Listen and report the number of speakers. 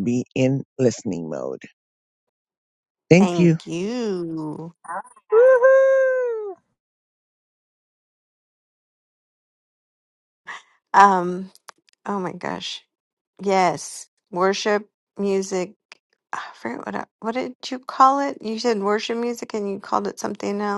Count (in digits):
3